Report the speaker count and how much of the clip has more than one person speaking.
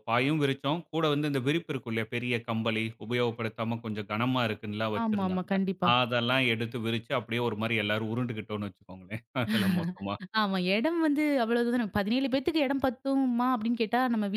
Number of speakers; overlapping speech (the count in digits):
2, about 4%